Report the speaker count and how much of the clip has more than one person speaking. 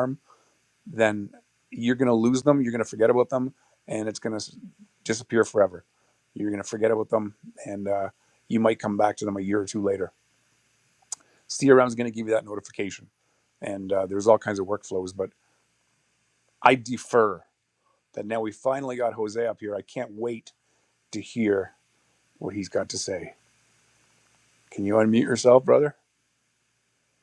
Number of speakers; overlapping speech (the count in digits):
1, no overlap